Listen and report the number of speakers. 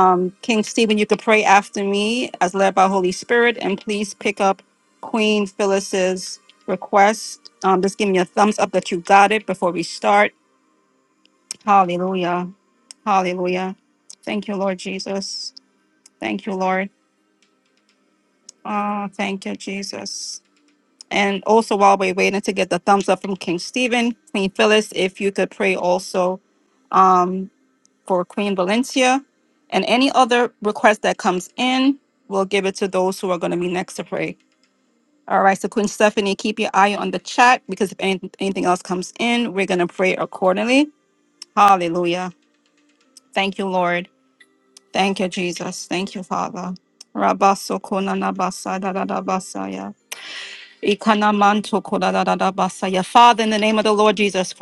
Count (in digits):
1